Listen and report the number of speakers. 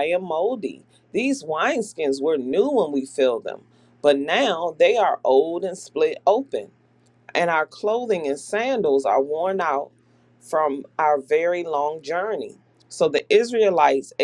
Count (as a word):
one